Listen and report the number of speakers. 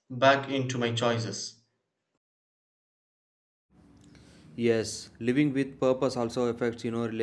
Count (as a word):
two